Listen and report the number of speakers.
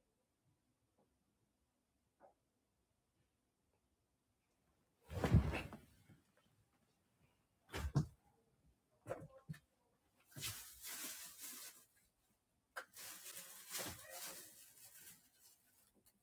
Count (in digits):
0